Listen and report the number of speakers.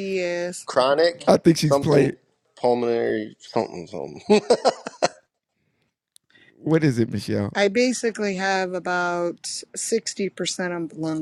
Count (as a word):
three